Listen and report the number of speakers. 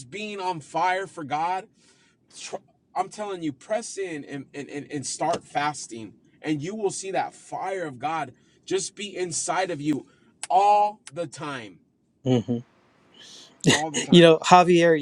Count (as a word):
two